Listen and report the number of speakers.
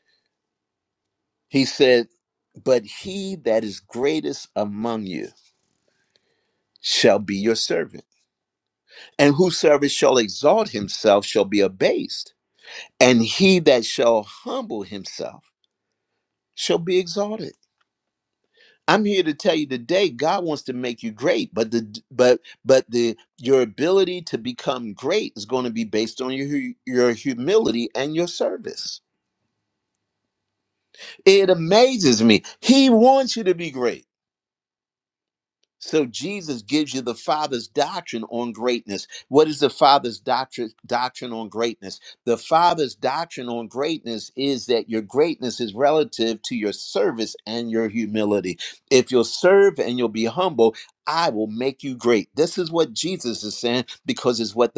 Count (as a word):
one